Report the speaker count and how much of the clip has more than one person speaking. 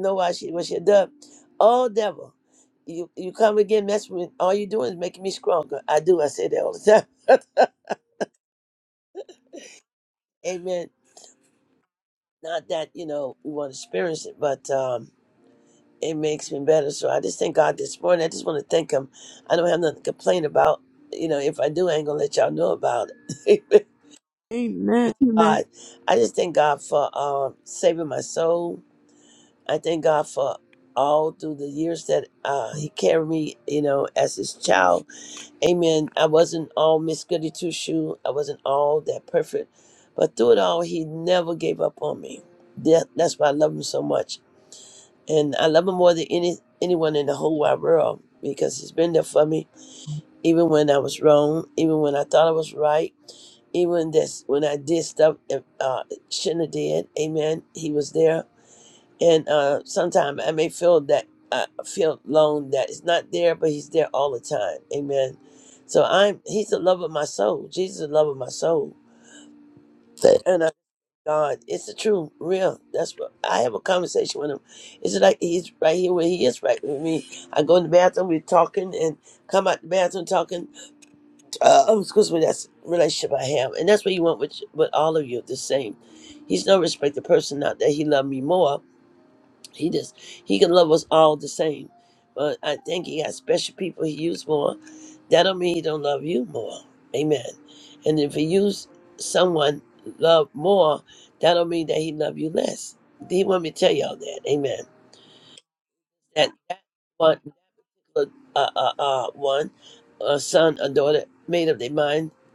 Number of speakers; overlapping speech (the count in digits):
2, under 1%